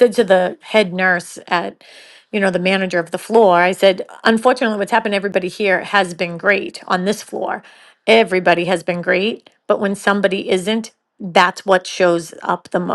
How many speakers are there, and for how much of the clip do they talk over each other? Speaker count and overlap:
1, no overlap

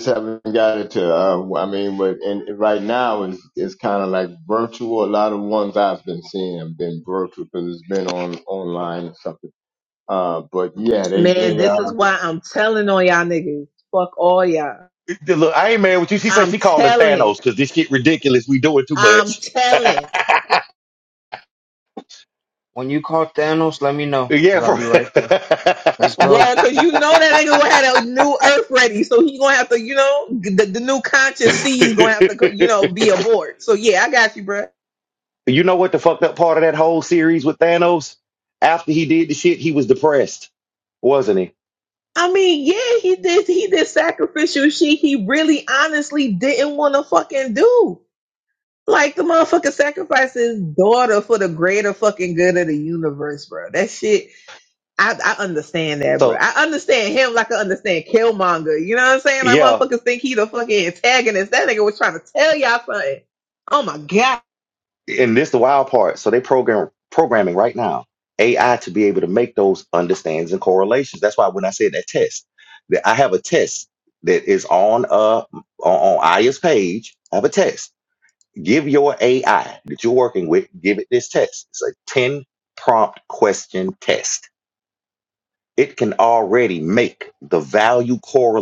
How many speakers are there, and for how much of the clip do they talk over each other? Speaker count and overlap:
4, about 4%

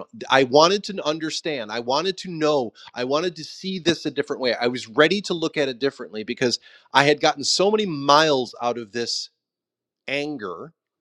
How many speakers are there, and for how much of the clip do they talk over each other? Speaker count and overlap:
1, no overlap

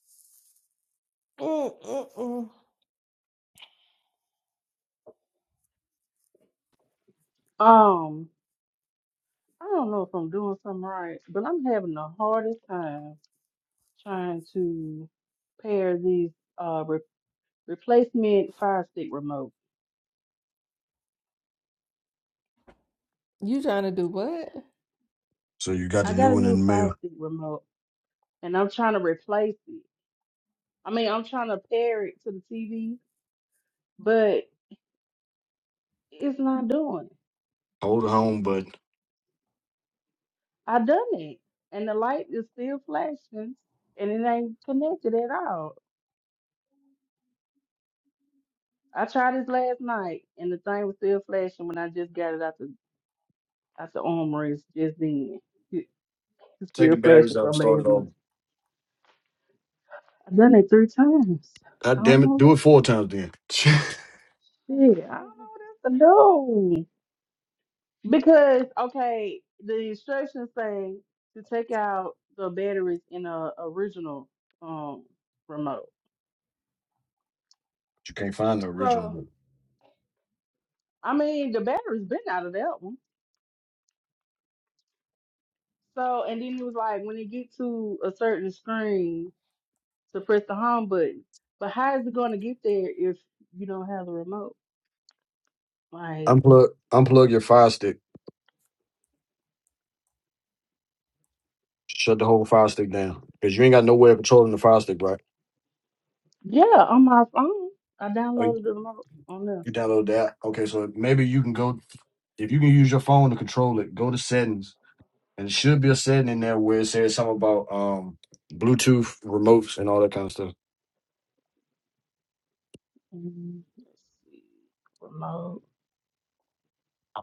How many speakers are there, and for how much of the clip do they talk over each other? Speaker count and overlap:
3, about 3%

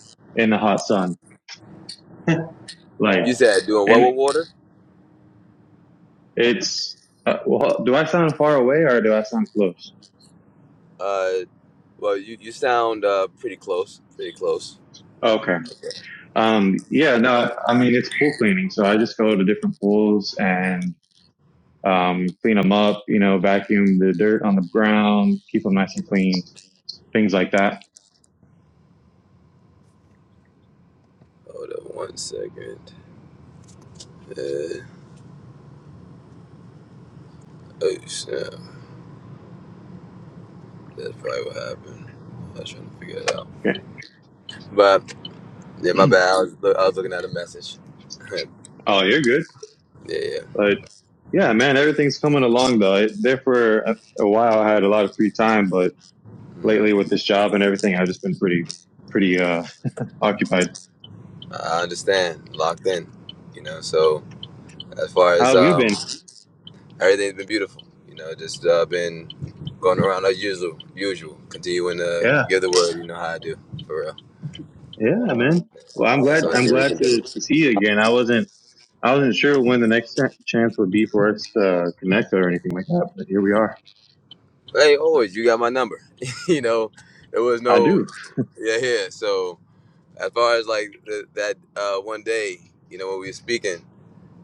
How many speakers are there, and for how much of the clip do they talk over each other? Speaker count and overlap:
2, about 3%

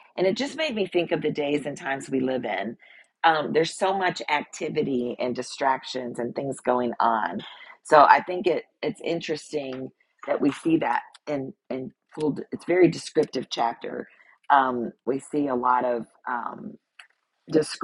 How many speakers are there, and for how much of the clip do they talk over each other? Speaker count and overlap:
1, no overlap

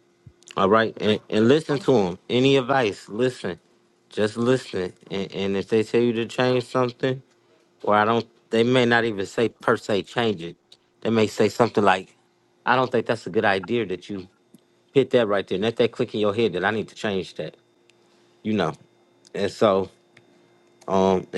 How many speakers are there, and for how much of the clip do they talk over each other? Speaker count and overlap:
1, no overlap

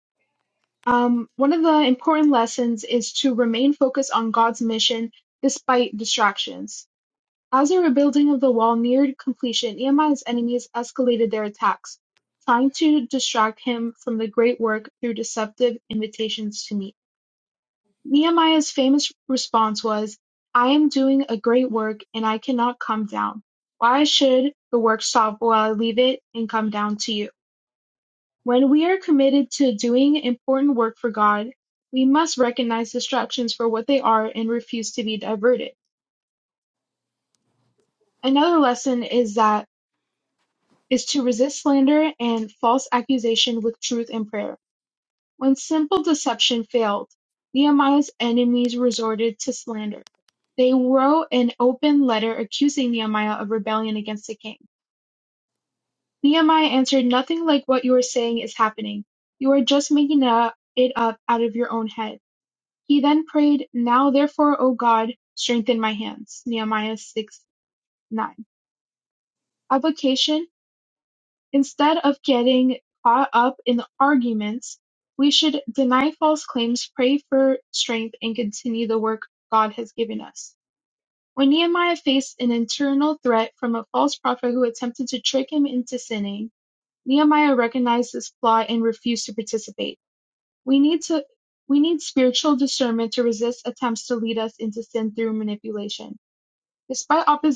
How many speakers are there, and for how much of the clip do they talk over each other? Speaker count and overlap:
1, no overlap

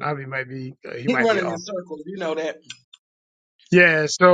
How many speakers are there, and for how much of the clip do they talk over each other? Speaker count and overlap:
2, about 13%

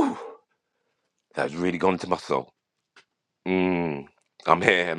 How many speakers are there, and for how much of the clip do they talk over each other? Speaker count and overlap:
1, no overlap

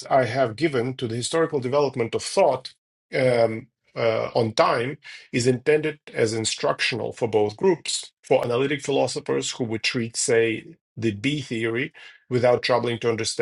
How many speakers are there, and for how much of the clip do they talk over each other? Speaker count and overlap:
1, no overlap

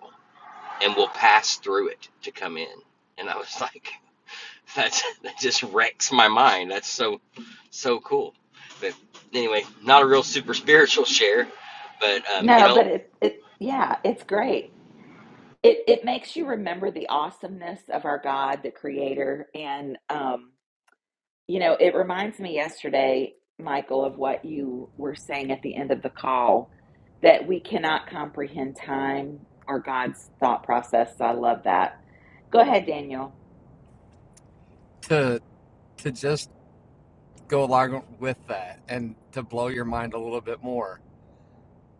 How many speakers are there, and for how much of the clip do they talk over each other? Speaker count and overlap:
3, about 1%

